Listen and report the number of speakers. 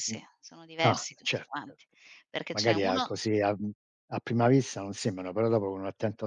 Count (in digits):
2